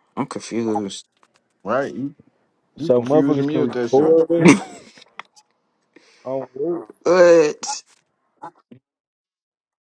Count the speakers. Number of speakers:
3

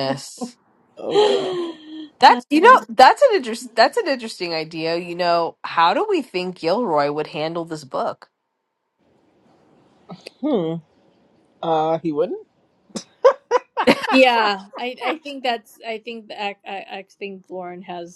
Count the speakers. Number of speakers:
3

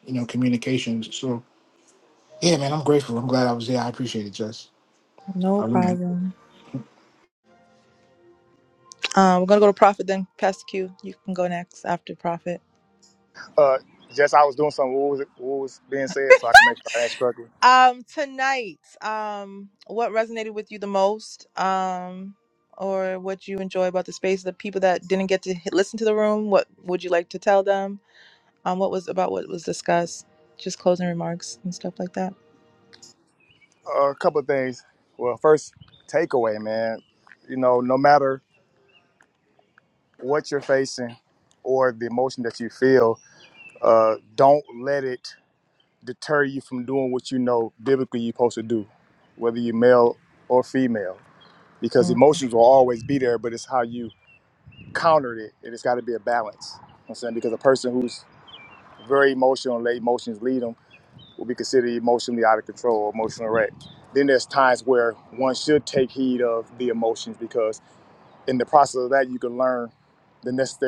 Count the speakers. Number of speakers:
3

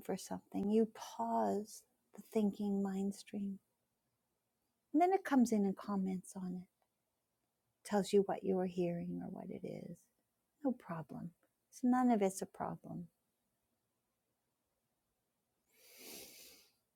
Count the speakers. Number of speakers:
1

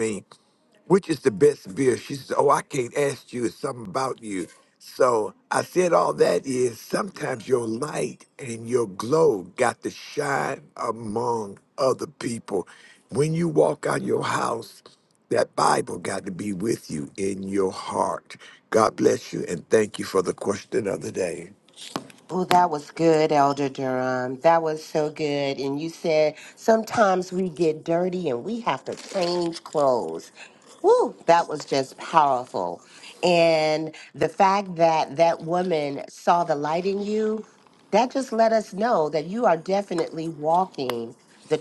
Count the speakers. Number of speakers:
2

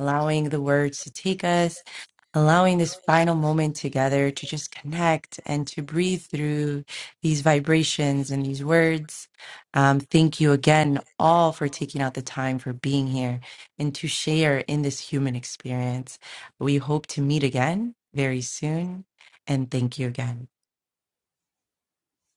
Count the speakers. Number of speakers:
1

